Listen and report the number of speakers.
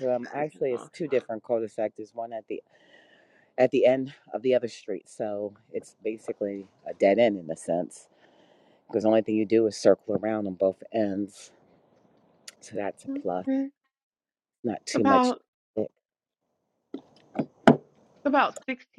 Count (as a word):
two